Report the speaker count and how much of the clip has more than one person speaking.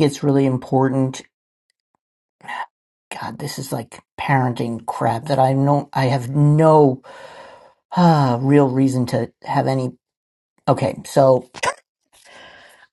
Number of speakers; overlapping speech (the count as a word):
one, no overlap